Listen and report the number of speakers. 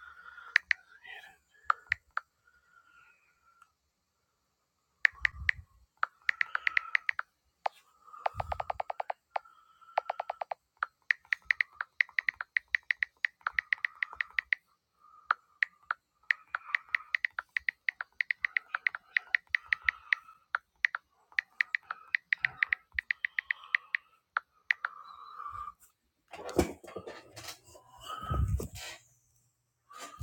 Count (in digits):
0